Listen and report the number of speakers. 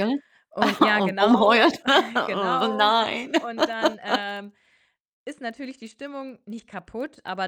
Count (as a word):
two